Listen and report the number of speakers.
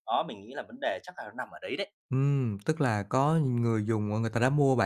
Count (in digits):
2